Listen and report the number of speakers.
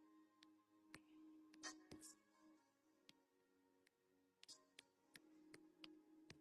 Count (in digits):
0